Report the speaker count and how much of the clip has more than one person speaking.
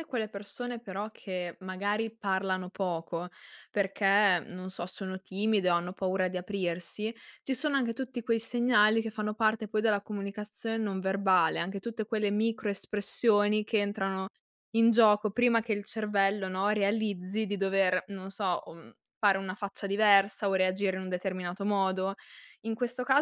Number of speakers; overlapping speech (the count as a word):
one, no overlap